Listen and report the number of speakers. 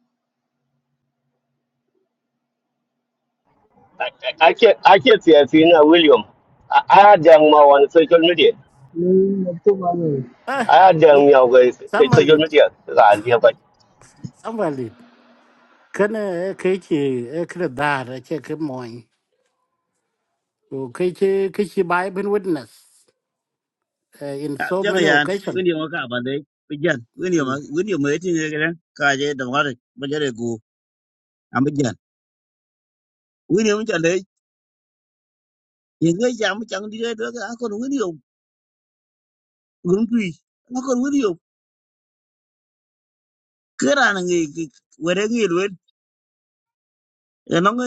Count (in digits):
4